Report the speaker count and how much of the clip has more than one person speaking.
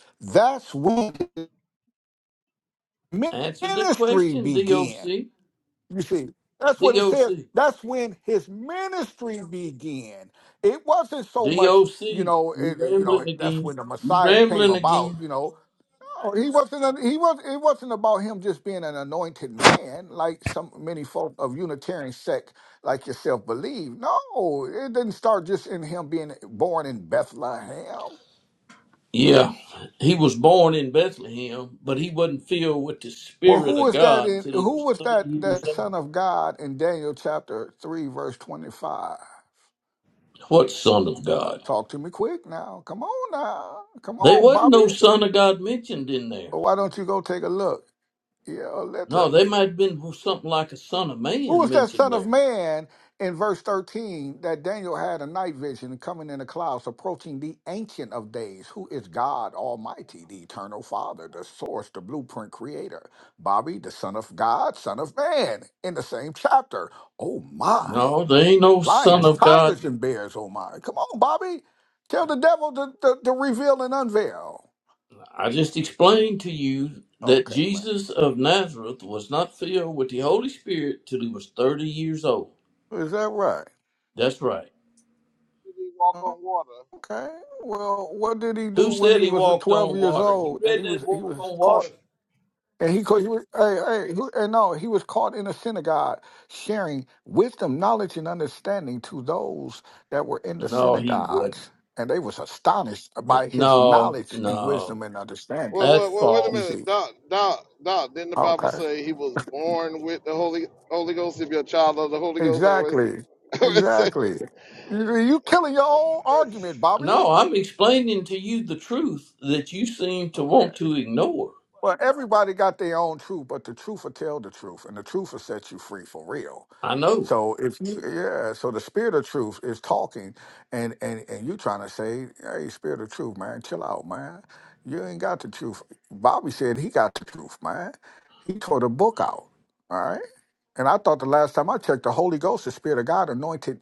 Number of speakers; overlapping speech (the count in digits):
3, about 13%